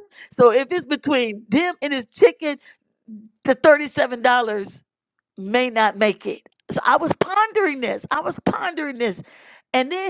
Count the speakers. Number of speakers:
one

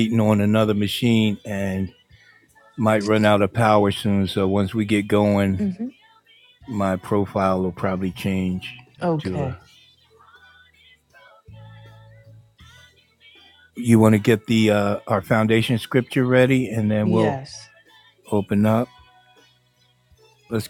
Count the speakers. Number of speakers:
two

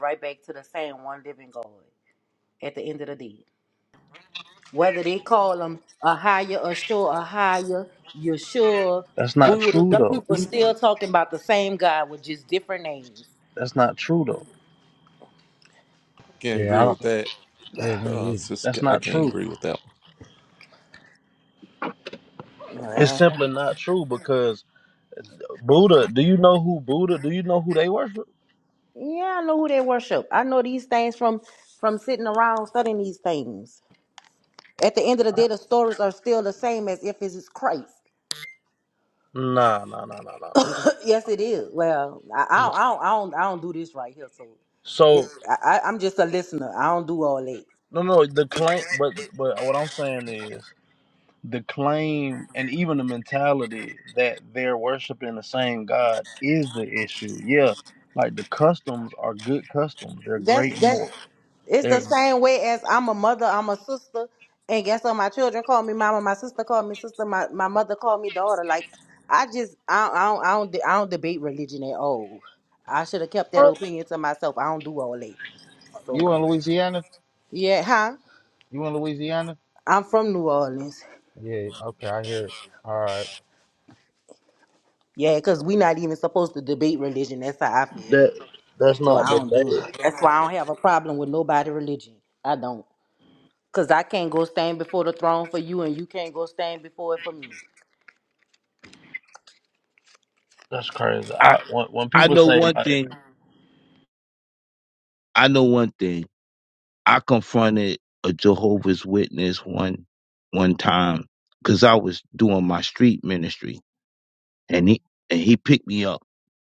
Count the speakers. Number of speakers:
five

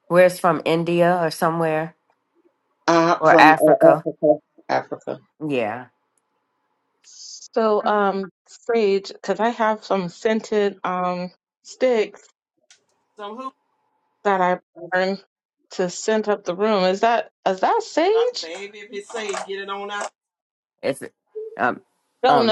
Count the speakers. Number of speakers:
four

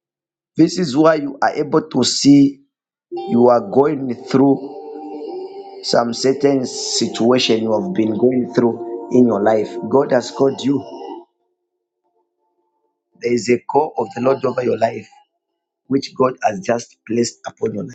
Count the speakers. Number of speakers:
one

